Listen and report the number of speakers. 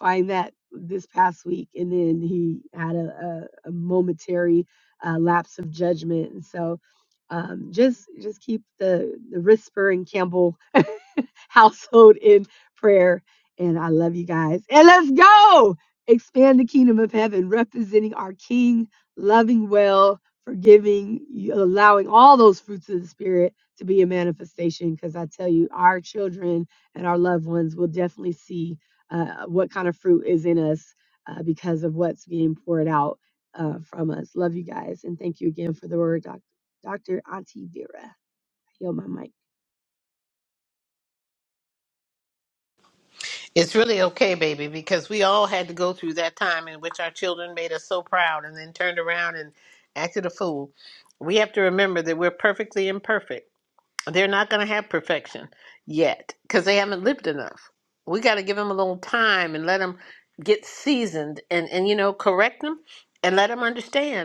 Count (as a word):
two